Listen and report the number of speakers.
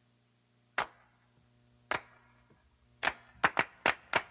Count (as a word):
zero